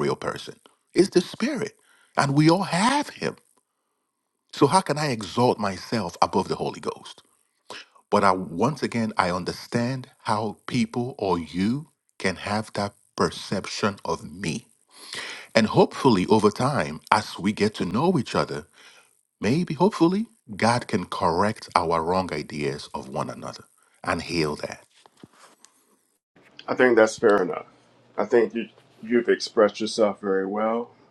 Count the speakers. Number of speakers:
2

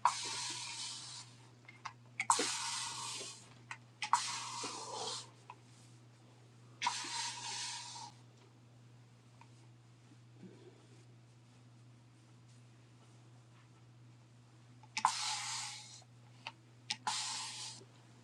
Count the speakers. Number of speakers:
0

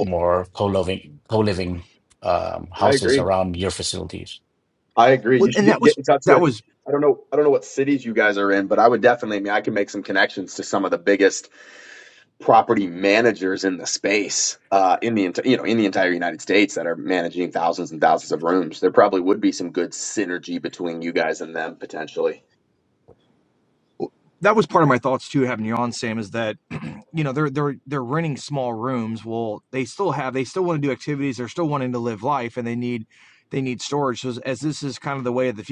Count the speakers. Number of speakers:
3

